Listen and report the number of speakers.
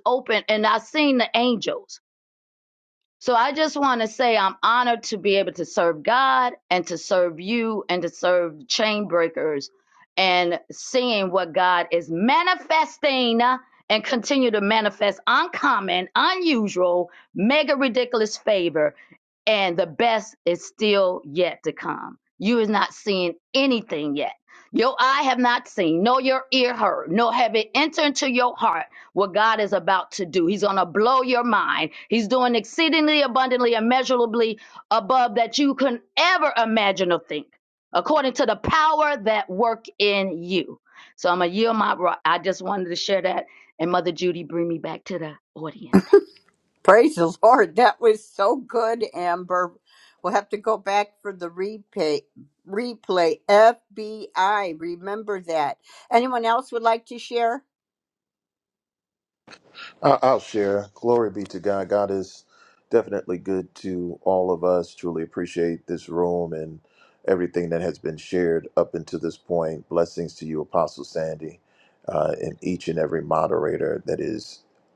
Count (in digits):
3